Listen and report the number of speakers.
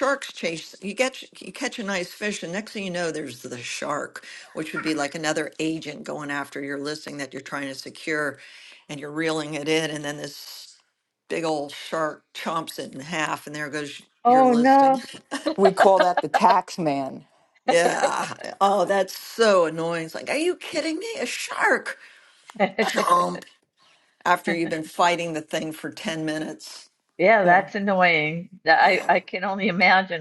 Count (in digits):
3